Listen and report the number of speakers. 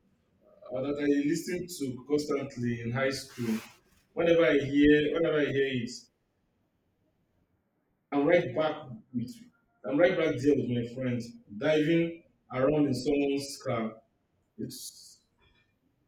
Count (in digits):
1